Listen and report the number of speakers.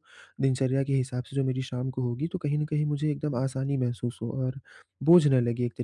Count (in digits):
1